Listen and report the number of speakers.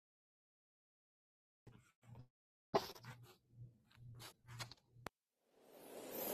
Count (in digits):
0